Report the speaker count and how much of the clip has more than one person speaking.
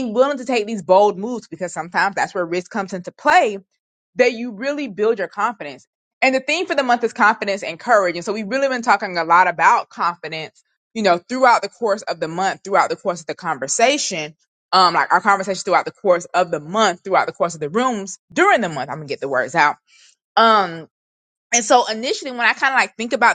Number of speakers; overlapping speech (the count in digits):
1, no overlap